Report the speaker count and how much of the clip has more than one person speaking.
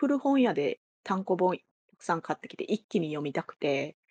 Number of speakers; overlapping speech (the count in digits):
1, no overlap